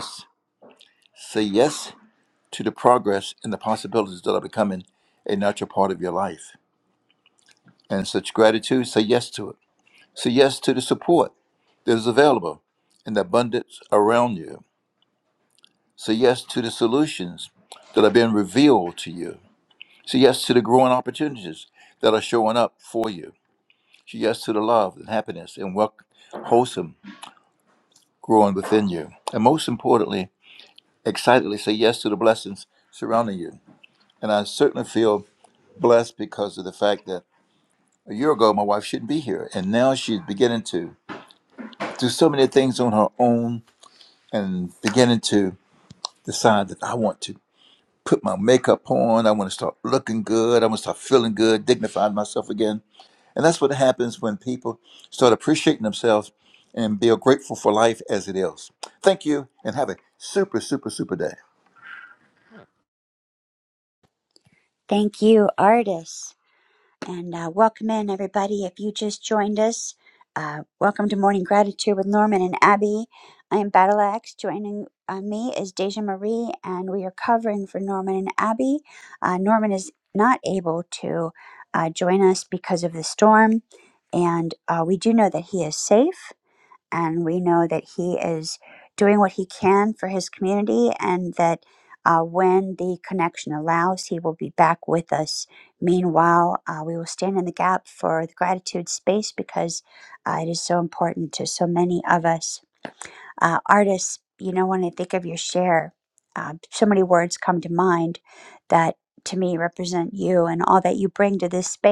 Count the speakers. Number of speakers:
2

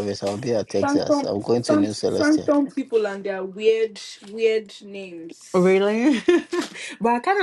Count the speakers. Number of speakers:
3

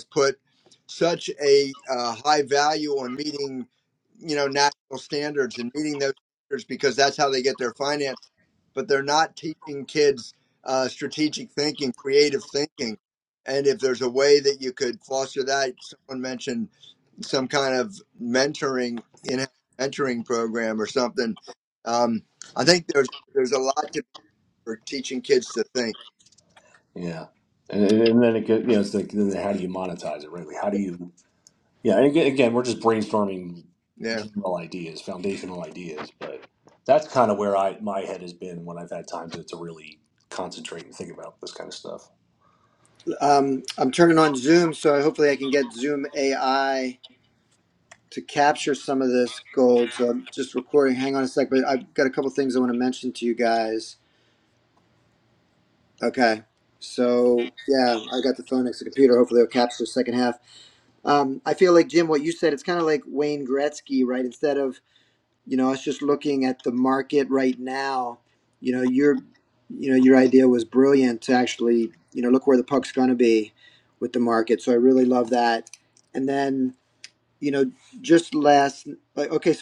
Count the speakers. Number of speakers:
3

